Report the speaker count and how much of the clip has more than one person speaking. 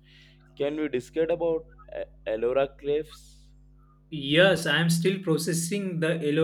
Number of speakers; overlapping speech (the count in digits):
2, no overlap